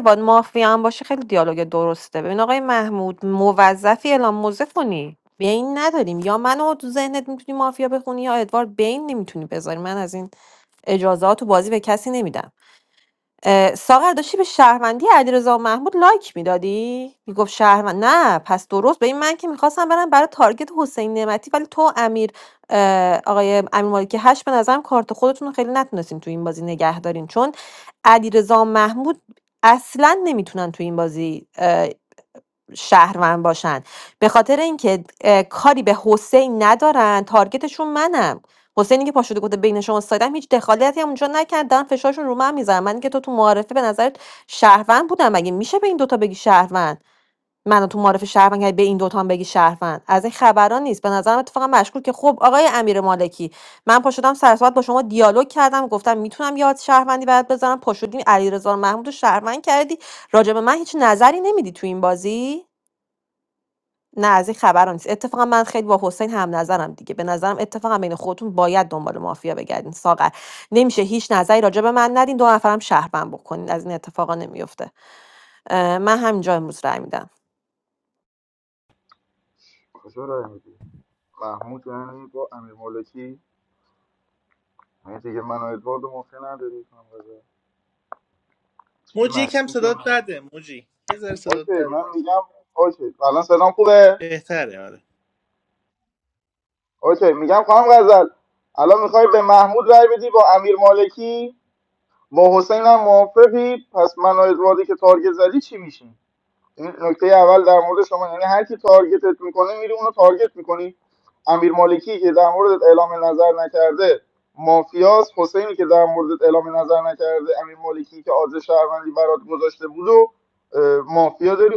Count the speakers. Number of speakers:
three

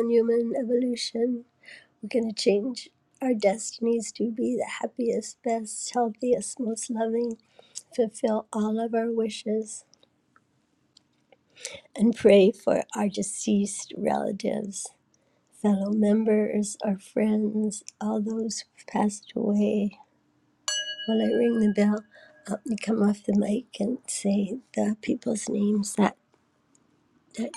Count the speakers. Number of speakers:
one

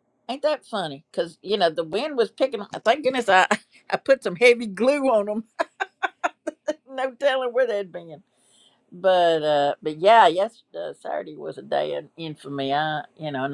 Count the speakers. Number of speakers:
one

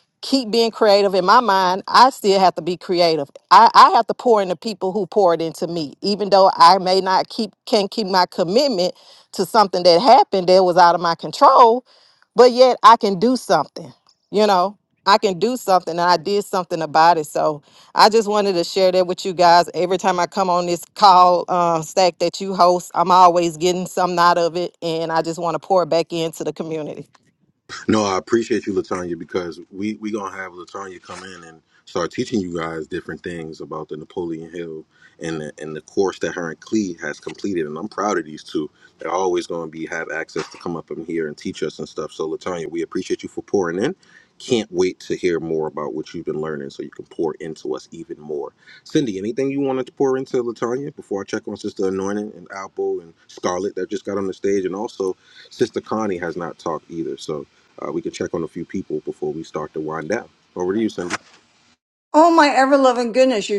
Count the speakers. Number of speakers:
three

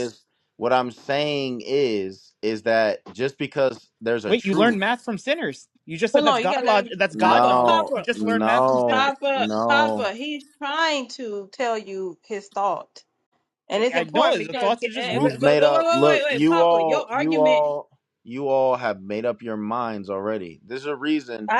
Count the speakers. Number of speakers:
three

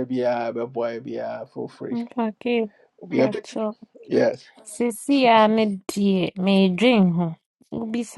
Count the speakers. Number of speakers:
two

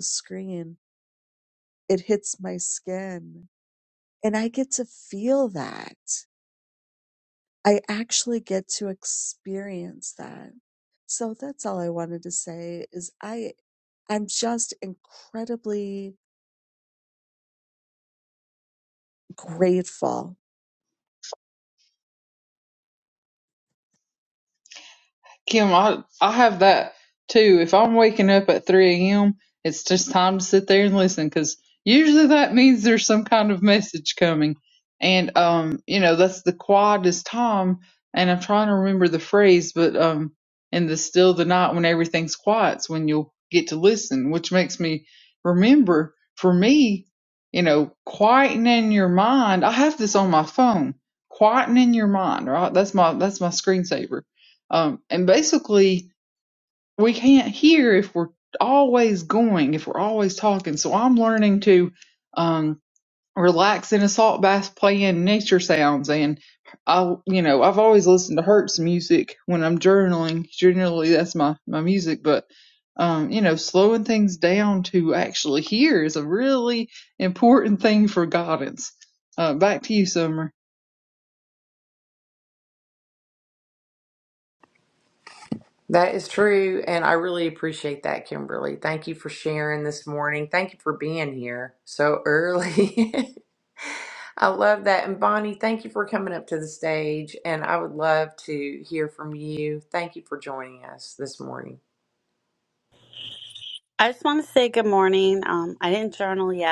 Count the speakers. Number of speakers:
four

